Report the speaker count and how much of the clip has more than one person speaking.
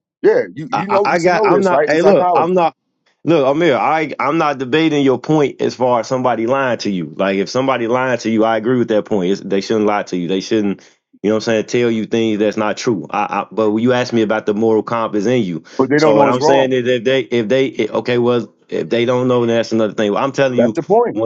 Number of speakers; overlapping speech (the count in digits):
2, about 15%